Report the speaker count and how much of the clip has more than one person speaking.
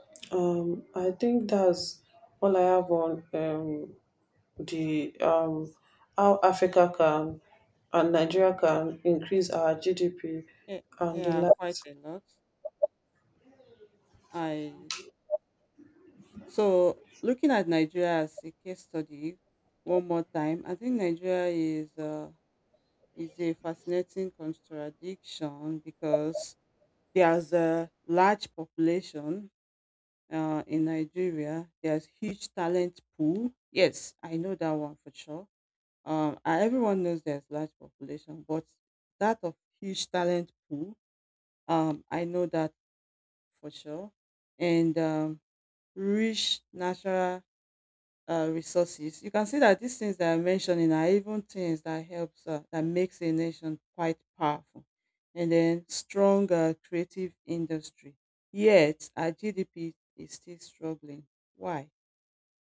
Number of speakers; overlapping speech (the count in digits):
2, about 1%